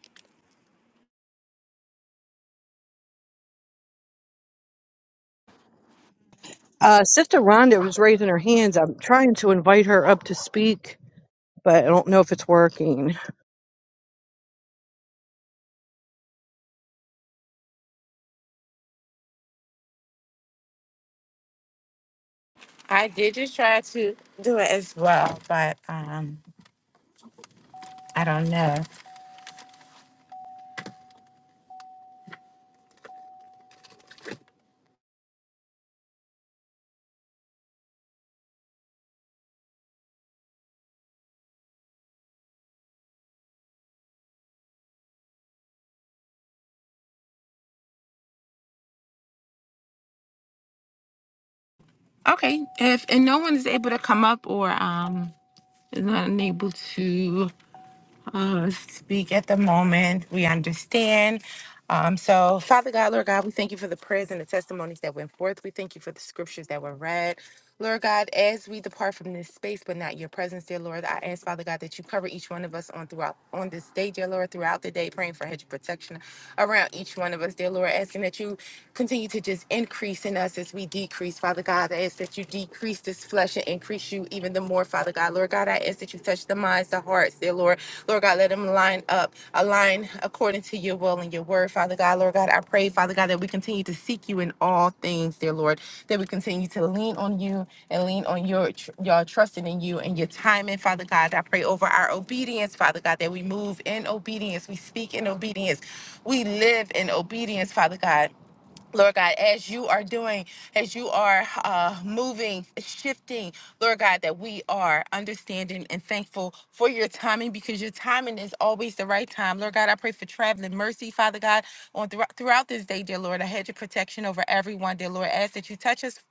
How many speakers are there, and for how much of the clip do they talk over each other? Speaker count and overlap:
2, no overlap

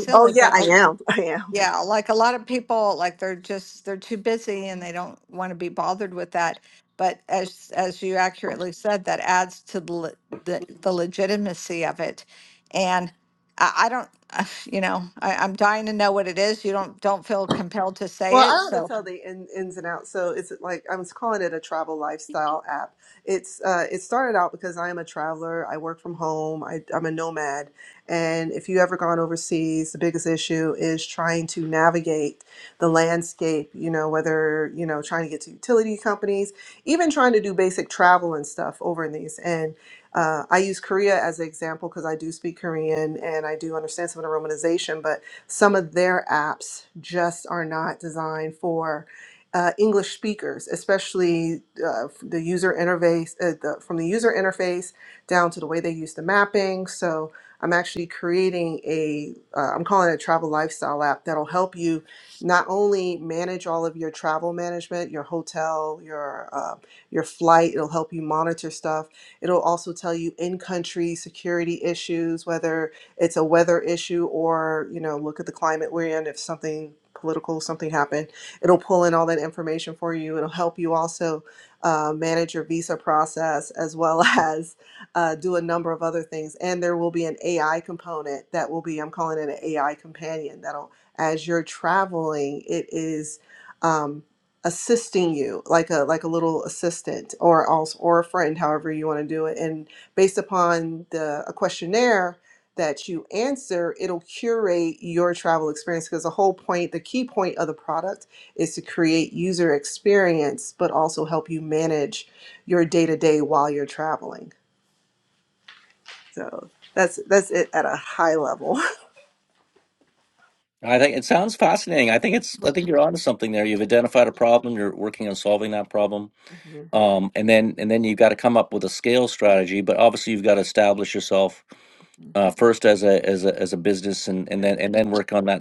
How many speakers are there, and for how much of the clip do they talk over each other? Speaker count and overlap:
3, about 1%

